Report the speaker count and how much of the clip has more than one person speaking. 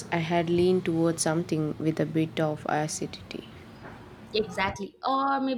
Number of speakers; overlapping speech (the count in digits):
2, no overlap